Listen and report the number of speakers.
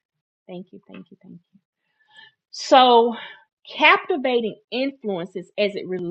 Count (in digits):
1